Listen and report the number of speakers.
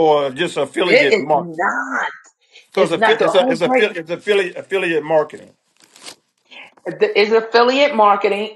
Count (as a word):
two